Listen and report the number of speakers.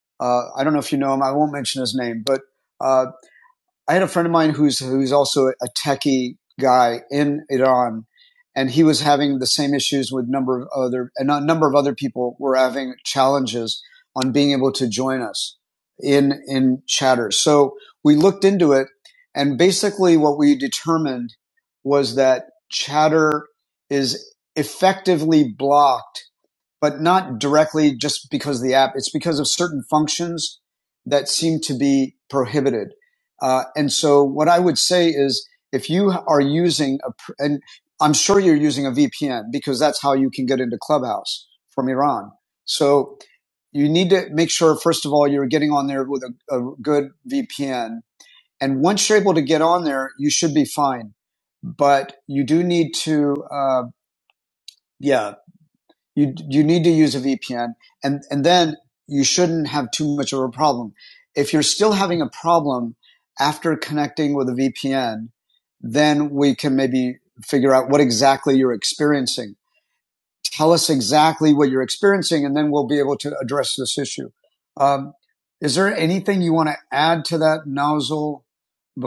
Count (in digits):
1